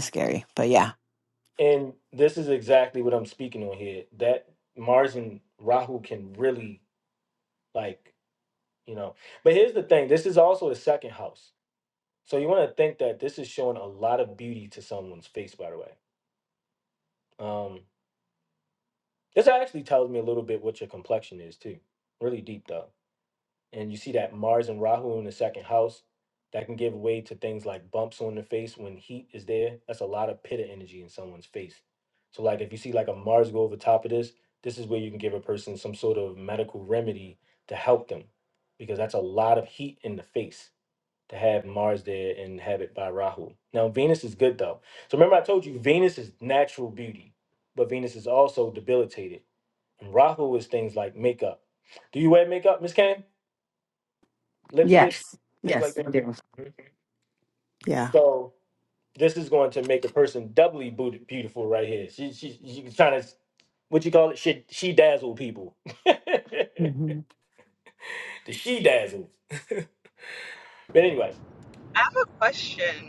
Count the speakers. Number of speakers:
three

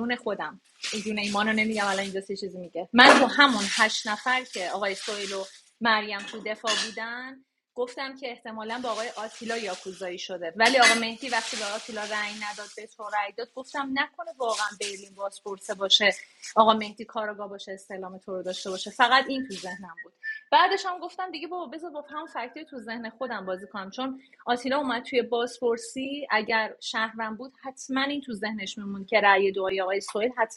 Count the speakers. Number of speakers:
one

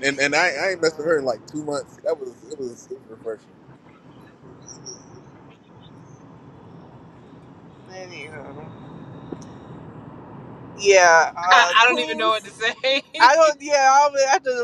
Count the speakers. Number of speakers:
three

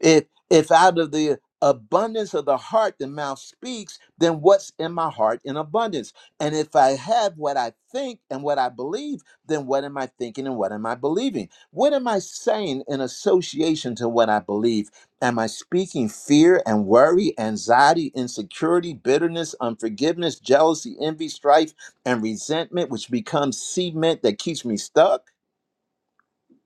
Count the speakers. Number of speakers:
one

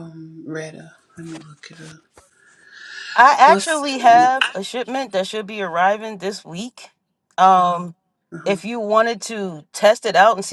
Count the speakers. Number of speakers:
two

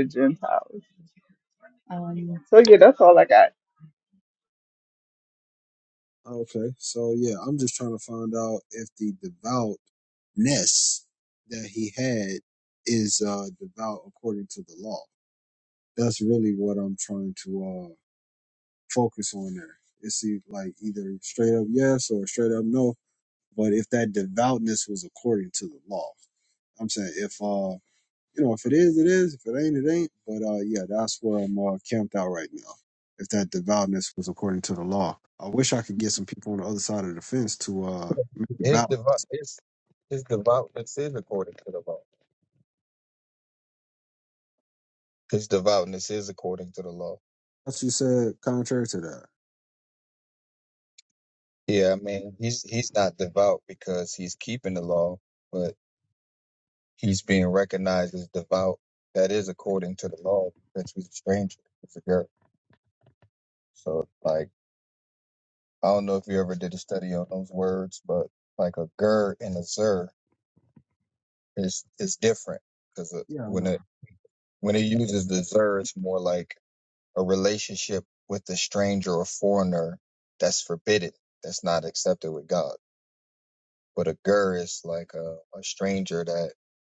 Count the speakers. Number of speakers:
three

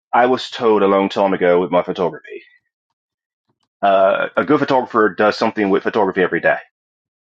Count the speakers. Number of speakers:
one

